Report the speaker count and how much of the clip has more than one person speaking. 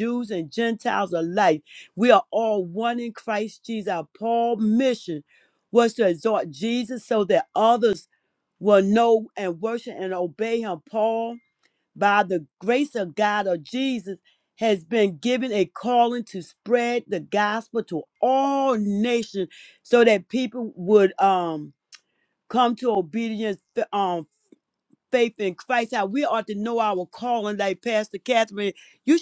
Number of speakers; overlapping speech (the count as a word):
one, no overlap